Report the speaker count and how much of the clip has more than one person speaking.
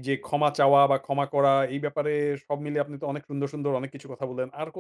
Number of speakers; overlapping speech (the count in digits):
1, no overlap